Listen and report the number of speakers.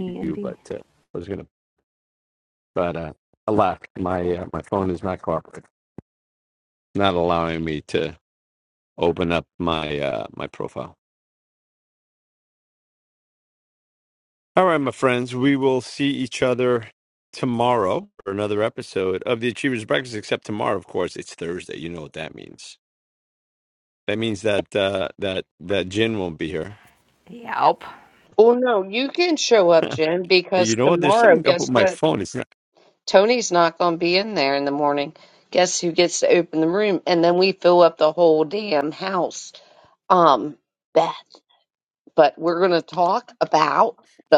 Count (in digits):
3